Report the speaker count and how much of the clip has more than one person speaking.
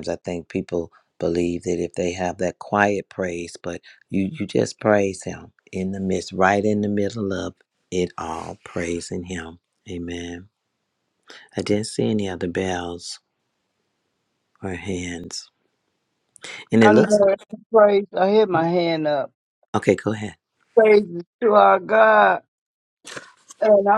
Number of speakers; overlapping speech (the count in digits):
2, about 2%